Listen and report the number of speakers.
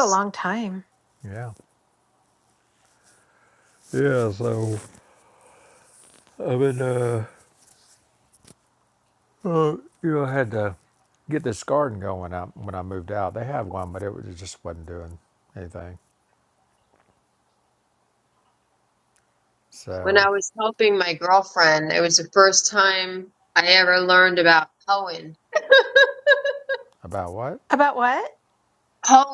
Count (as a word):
three